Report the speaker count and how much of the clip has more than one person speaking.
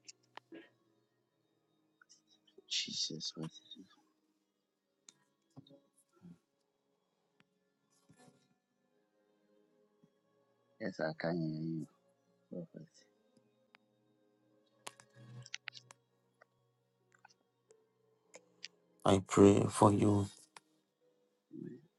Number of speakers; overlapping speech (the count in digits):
2, no overlap